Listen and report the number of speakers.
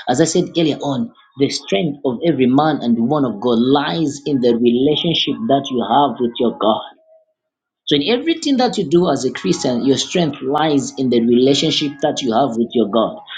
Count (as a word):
one